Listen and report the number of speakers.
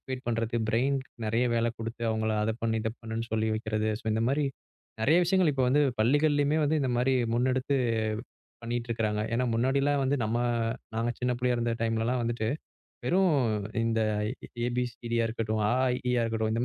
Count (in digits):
1